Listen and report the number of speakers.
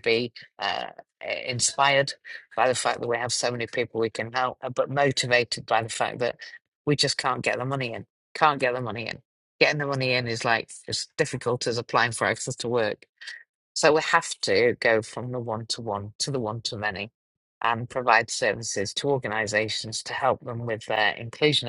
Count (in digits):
1